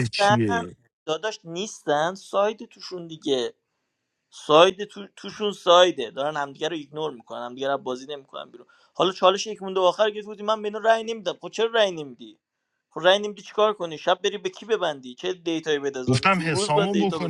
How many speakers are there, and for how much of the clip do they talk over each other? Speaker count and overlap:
two, about 9%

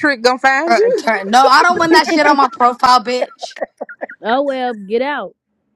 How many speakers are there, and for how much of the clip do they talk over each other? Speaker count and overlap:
three, about 7%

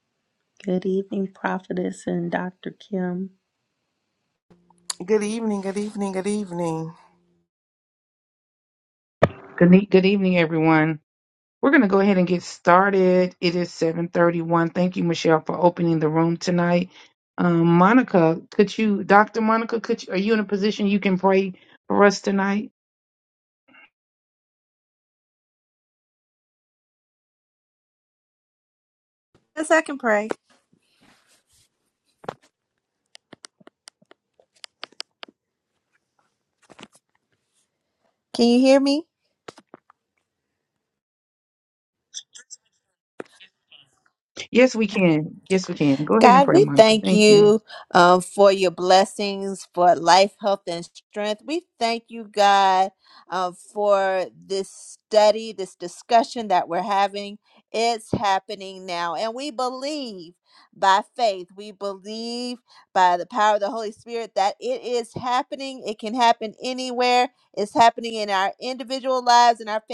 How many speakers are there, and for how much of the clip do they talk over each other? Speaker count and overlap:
four, about 2%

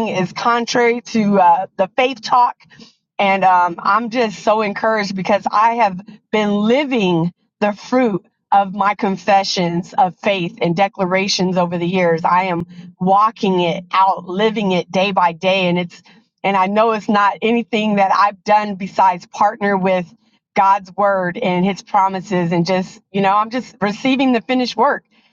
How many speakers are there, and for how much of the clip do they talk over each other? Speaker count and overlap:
one, no overlap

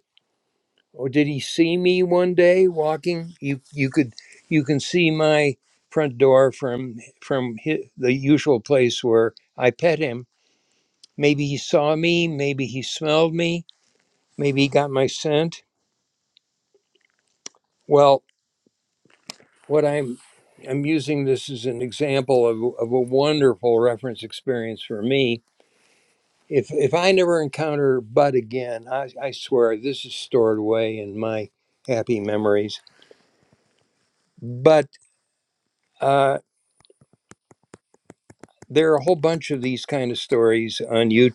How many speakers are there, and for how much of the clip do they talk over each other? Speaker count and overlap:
one, no overlap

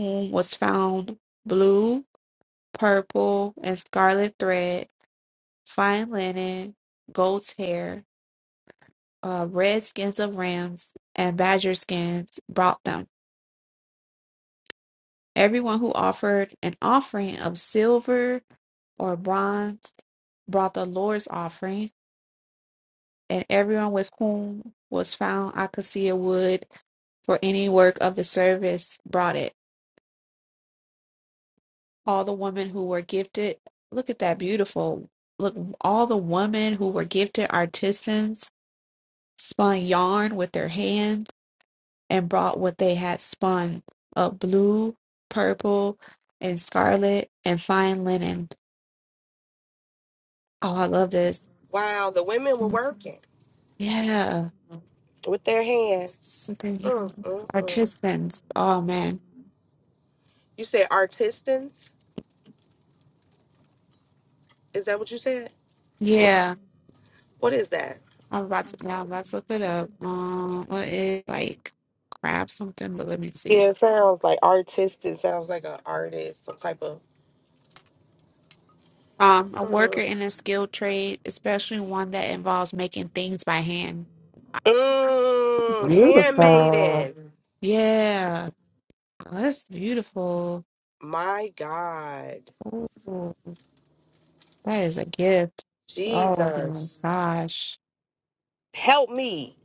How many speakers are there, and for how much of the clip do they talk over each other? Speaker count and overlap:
two, about 3%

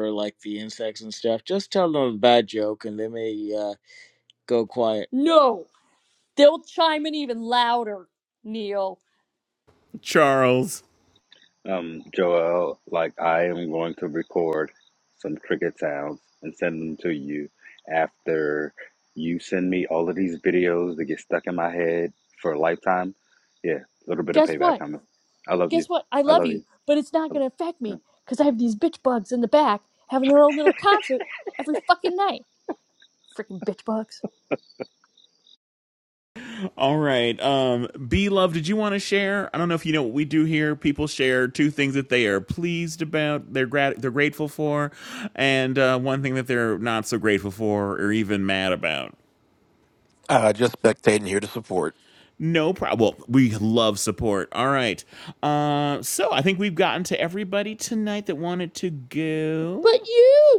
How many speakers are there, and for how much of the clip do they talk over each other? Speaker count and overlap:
five, about 2%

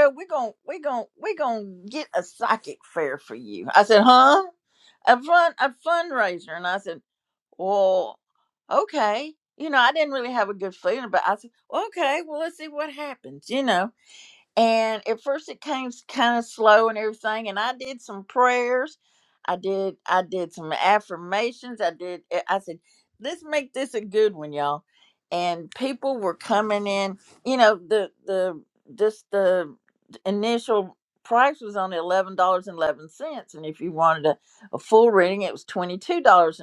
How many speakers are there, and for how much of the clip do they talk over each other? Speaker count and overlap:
one, no overlap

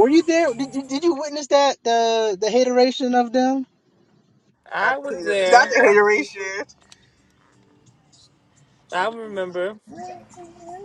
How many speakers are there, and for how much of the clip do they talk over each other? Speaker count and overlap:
three, about 8%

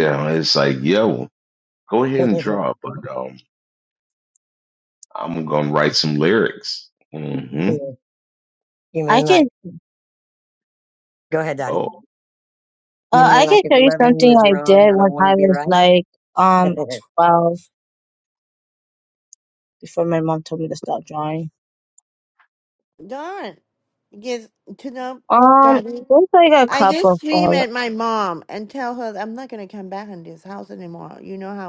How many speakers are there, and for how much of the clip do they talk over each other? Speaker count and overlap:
four, about 16%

